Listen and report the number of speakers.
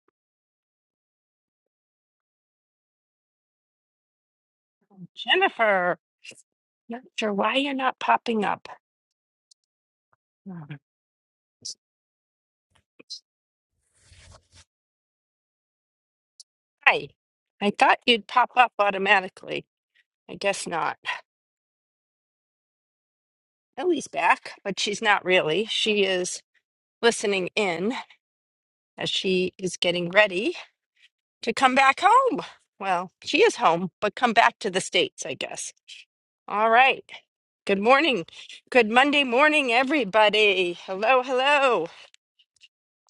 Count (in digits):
1